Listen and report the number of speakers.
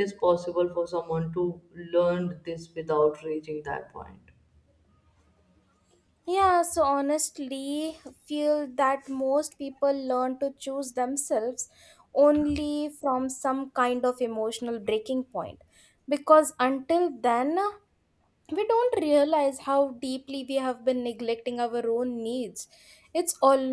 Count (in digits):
2